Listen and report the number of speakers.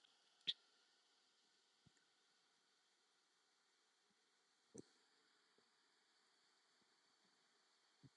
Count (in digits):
0